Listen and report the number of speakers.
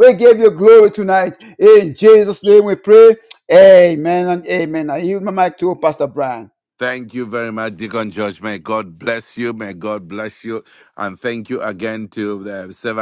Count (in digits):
2